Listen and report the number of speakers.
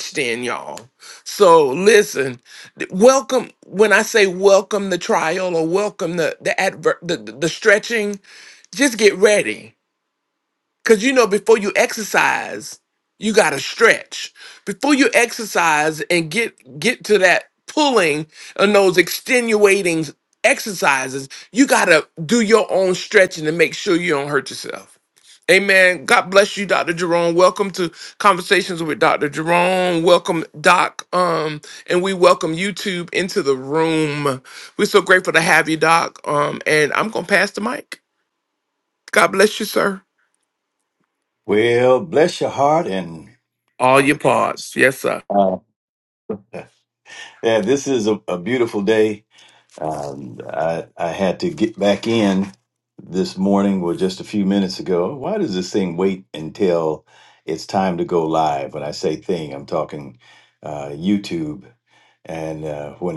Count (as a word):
two